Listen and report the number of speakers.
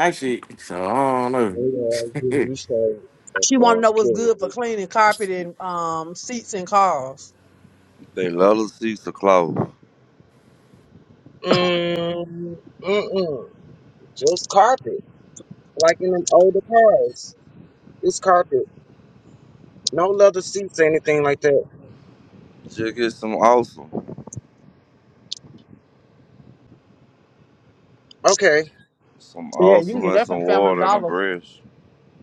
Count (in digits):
4